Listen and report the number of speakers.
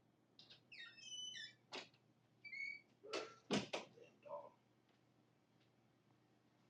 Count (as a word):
zero